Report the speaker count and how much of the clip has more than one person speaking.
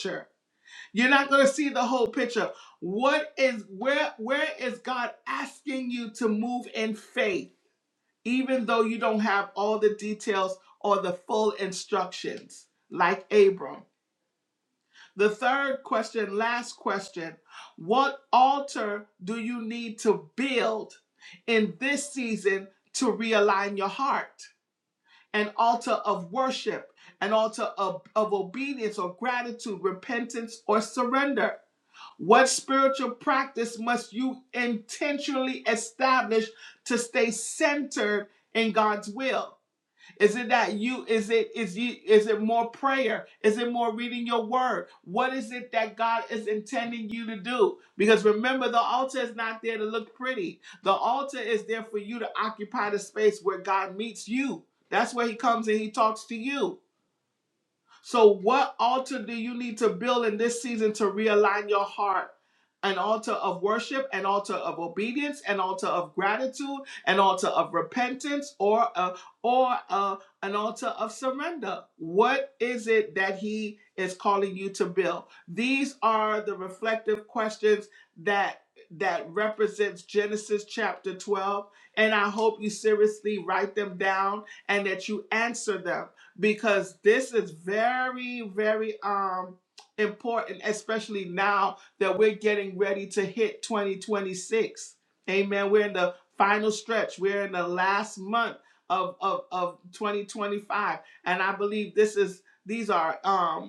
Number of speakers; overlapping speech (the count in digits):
1, no overlap